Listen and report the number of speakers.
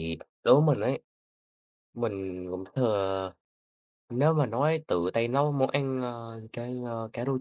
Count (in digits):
1